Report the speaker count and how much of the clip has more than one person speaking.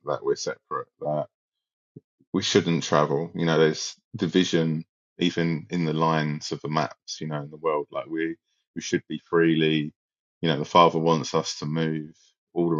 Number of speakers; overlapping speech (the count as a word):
one, no overlap